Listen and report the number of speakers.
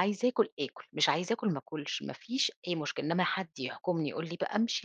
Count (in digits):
1